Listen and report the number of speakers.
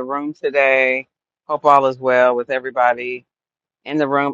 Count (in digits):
1